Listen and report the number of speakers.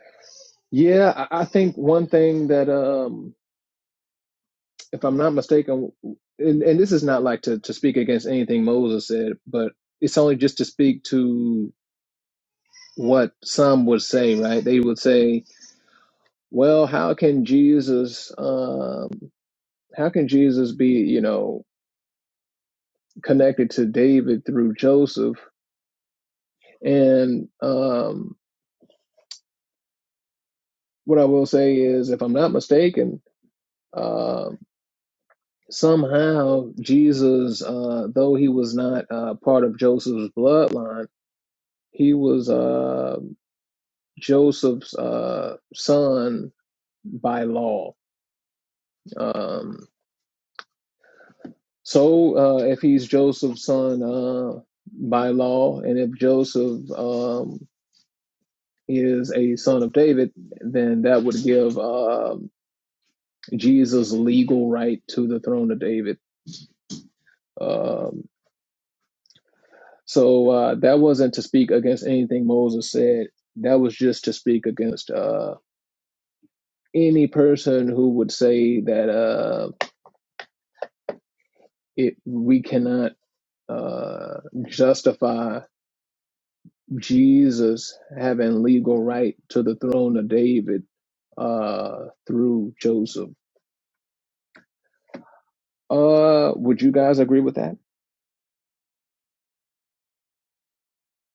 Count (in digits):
1